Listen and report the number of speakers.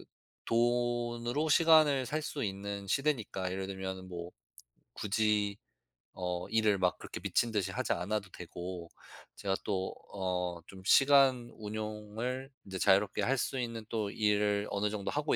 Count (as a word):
one